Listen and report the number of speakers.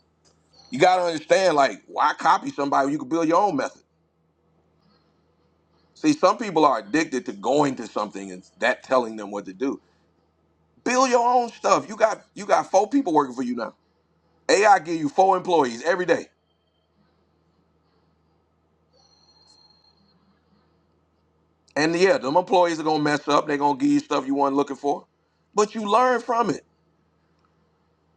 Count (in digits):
1